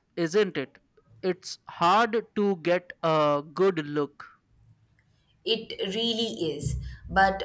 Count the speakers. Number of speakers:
two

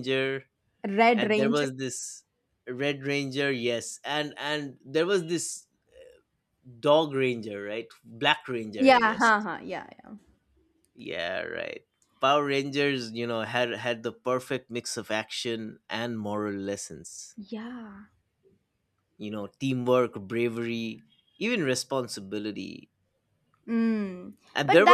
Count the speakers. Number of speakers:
two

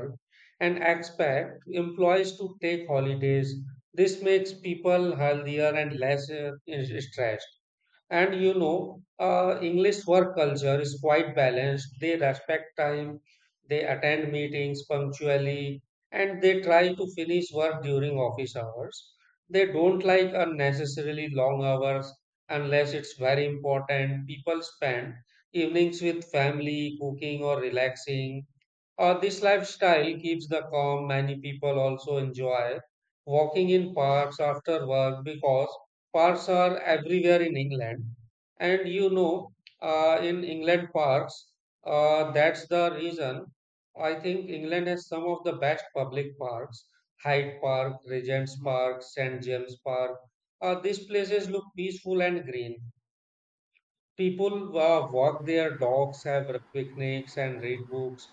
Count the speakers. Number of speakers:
one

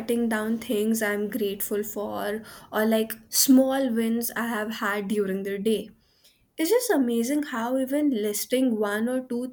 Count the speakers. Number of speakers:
one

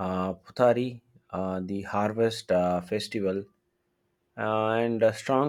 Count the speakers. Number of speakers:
one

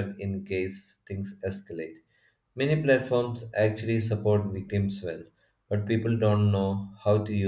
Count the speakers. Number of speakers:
one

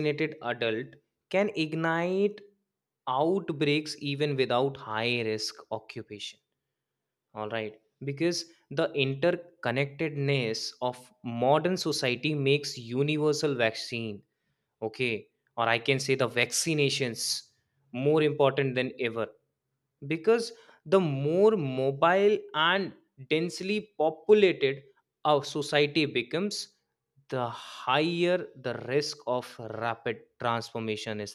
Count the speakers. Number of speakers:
one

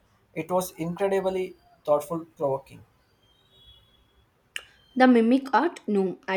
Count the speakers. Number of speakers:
two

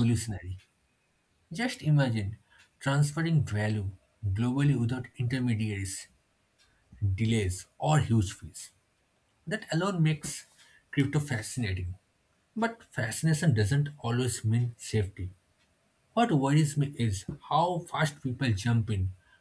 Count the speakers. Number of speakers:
one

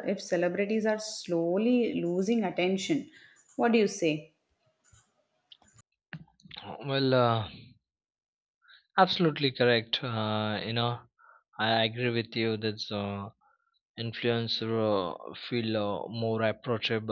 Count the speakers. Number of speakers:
two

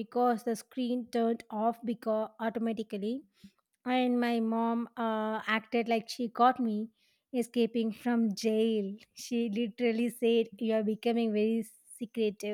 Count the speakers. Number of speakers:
one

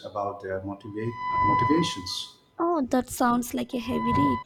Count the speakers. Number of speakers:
two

